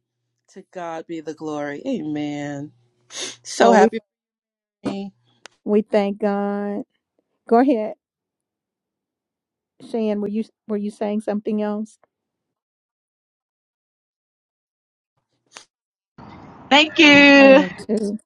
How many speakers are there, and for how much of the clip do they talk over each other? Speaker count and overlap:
3, about 4%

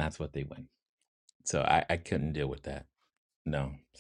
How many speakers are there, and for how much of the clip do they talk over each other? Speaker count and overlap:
1, no overlap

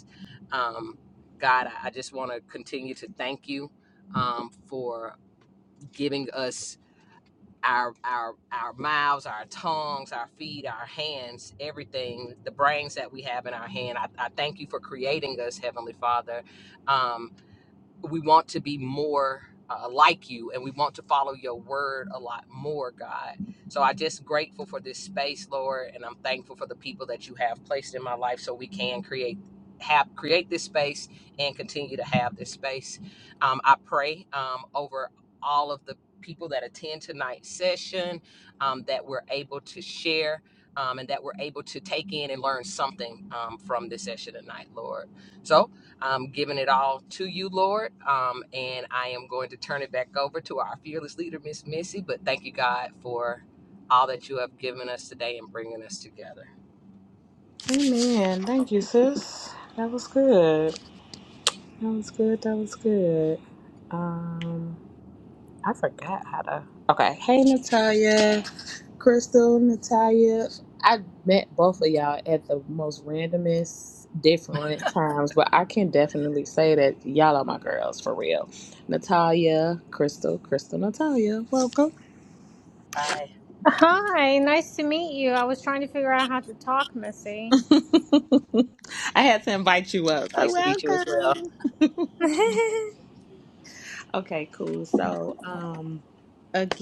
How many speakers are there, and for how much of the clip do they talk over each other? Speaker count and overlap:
3, about 1%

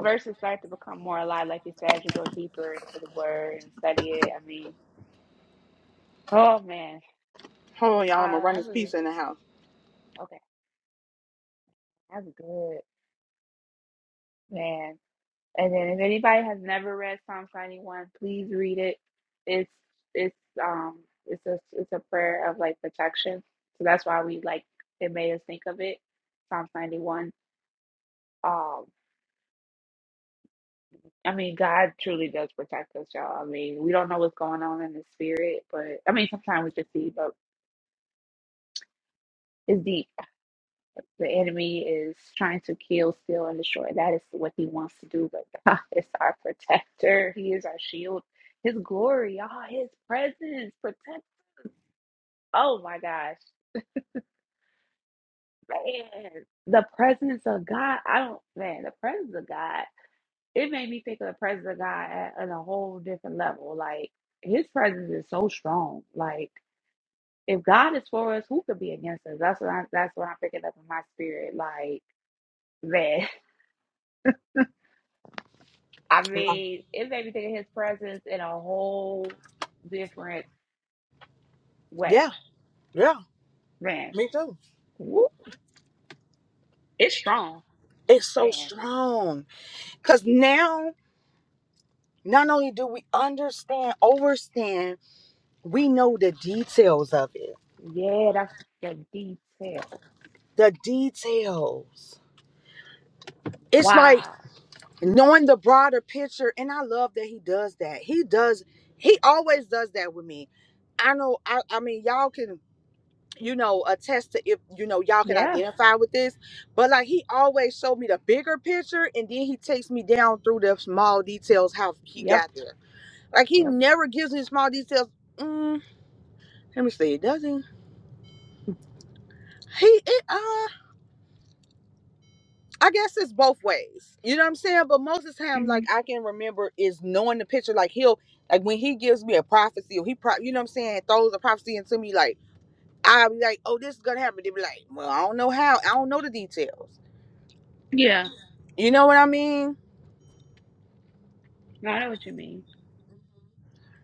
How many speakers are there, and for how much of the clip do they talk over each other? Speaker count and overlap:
2, about 2%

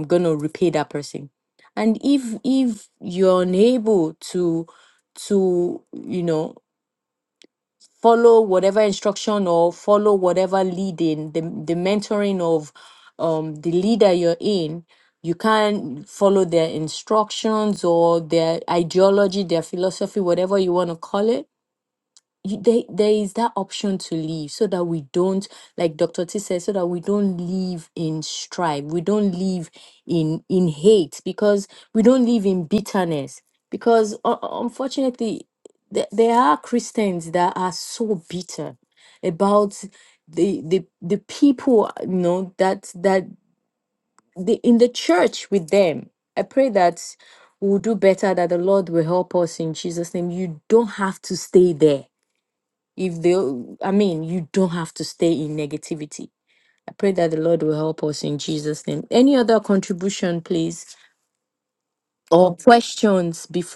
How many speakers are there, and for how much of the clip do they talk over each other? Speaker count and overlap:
1, no overlap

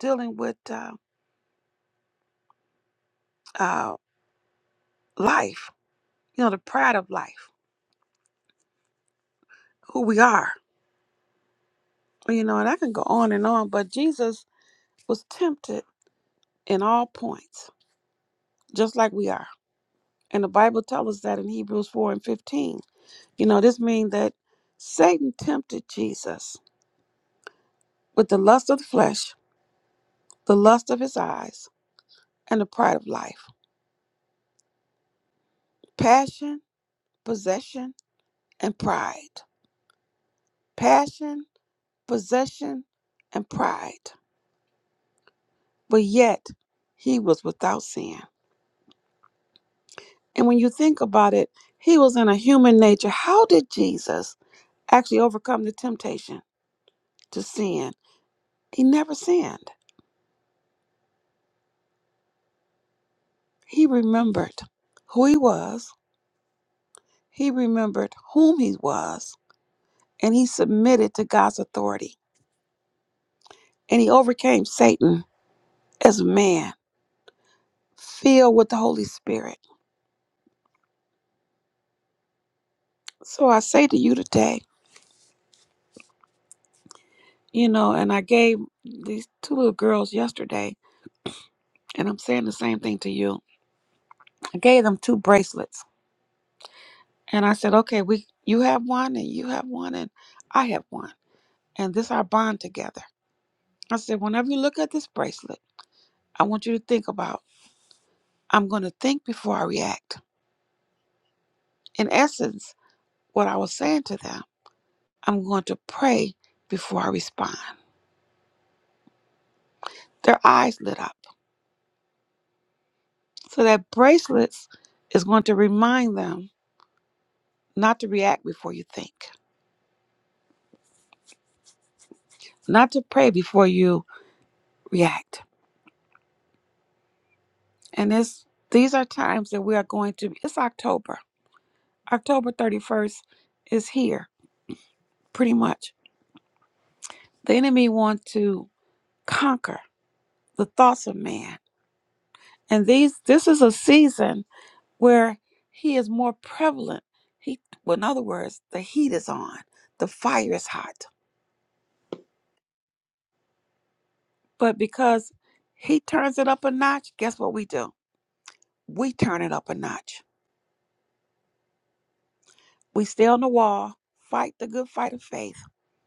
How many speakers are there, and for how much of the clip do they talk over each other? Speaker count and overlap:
1, no overlap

